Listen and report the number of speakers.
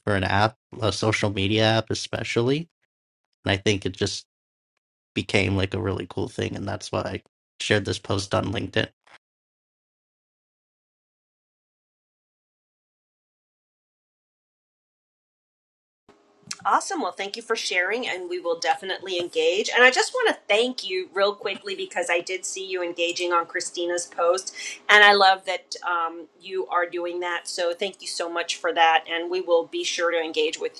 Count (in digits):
2